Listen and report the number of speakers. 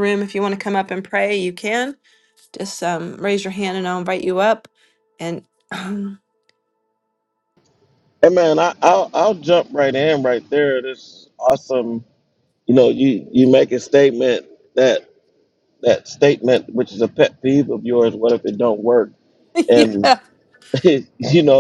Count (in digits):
2